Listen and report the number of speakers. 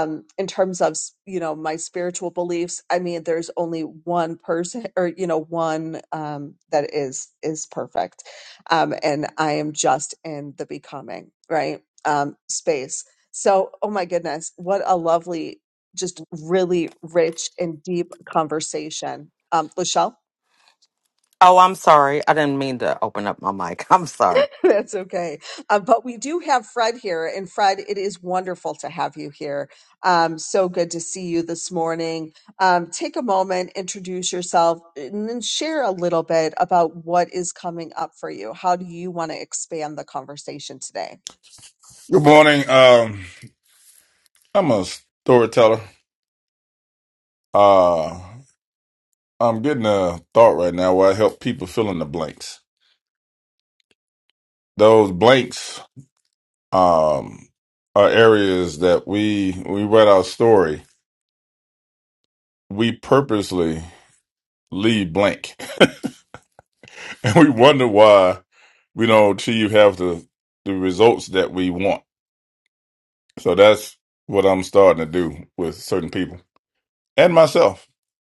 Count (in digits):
3